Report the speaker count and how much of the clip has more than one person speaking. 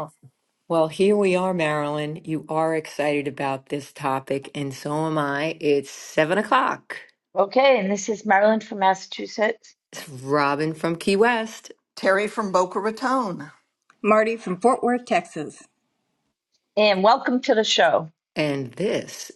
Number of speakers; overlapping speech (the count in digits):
4, no overlap